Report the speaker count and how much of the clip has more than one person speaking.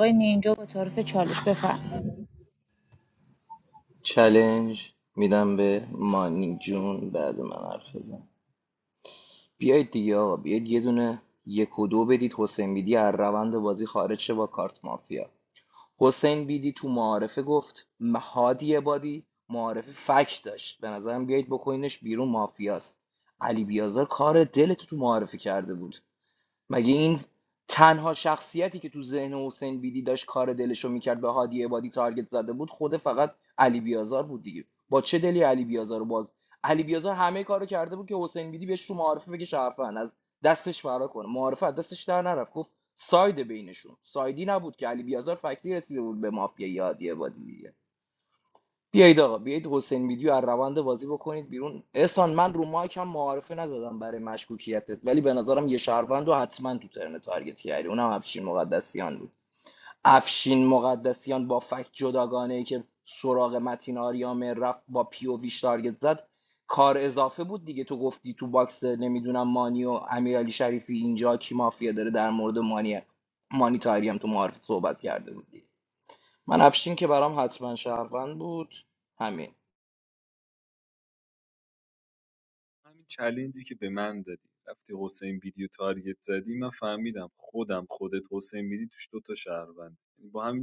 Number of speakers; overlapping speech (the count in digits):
3, no overlap